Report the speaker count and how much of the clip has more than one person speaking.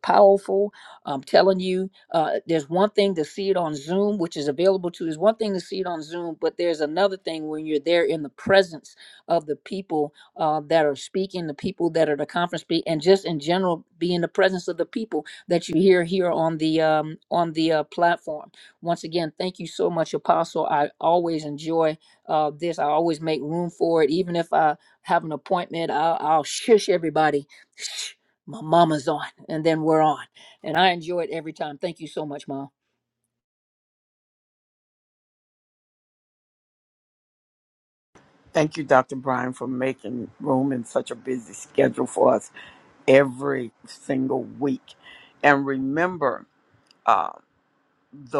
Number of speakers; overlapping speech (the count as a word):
two, no overlap